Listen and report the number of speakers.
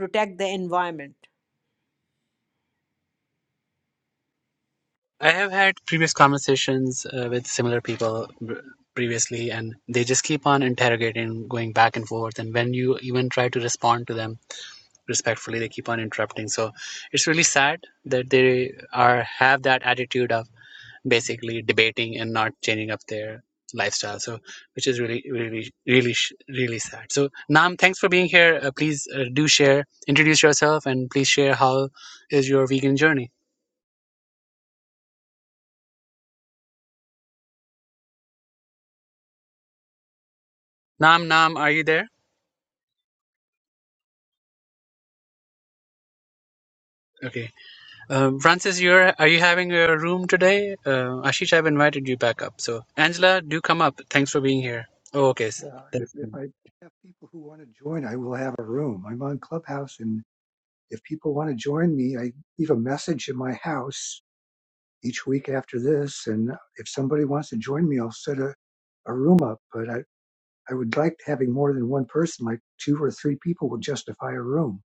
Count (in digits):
3